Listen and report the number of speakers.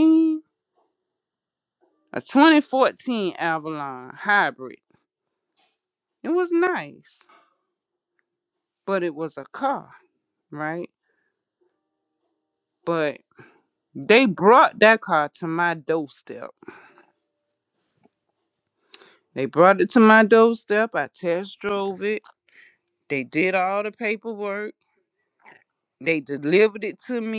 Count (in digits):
1